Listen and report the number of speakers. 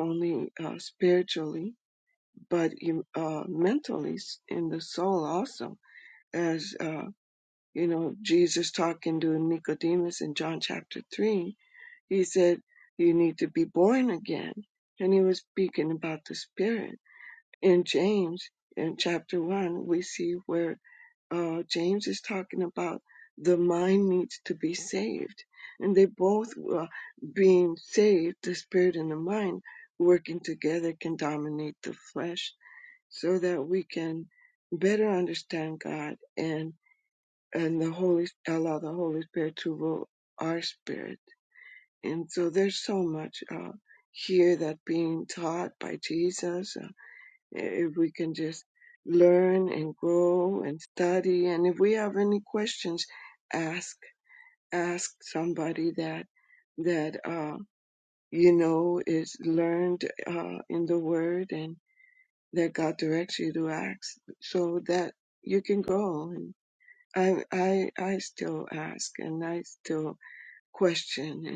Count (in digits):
1